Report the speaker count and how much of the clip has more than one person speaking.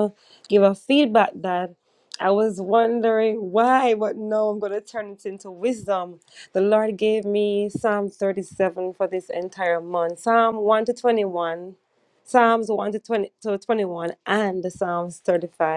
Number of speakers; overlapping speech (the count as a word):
one, no overlap